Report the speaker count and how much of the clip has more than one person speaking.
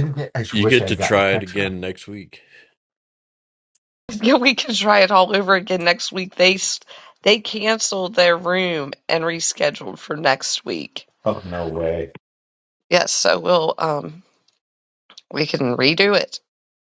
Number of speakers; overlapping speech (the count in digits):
3, about 7%